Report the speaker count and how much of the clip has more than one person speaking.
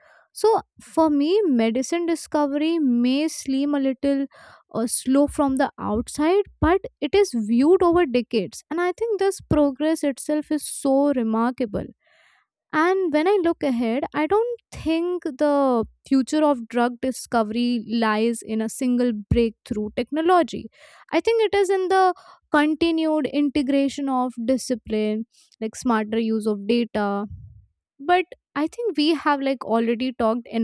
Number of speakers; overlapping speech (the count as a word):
one, no overlap